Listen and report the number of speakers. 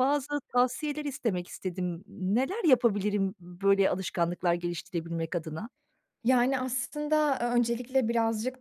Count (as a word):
two